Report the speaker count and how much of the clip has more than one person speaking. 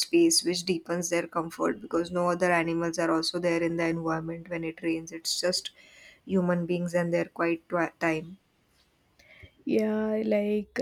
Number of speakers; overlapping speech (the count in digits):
2, no overlap